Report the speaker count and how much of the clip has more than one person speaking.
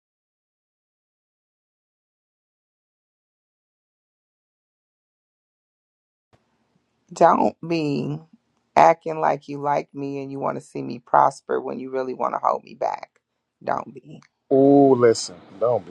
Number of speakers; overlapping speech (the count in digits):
2, no overlap